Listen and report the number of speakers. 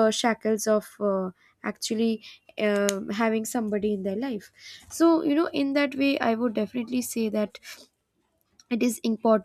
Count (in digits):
1